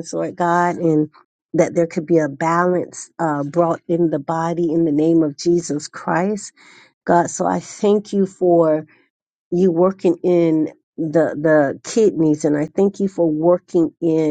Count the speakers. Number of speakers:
1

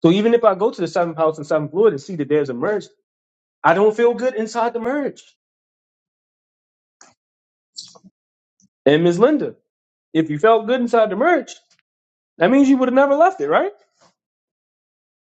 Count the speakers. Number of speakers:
1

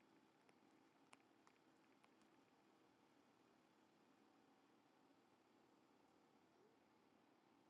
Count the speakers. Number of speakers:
0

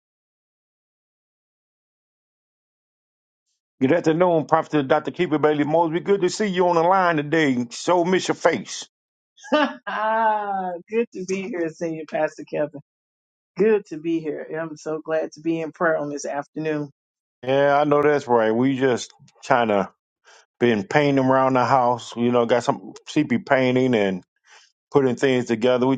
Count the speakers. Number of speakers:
2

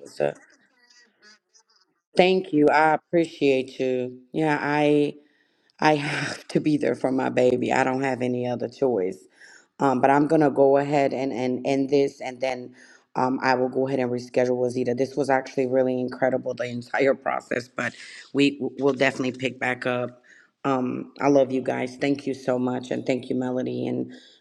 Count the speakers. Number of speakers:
1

